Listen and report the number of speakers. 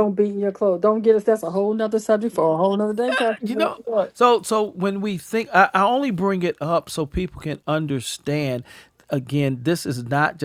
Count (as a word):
two